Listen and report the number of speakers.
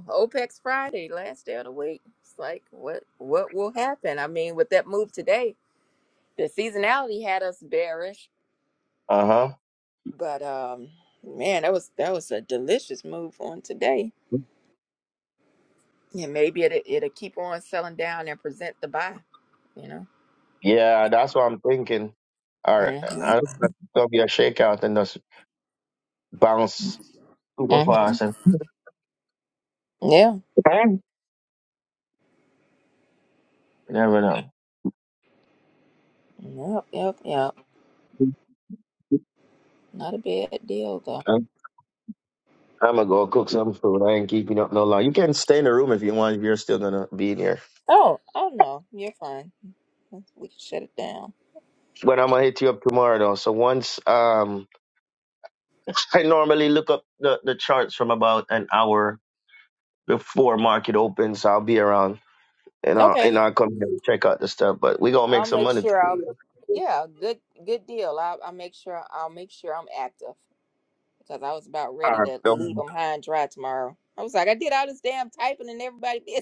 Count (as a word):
two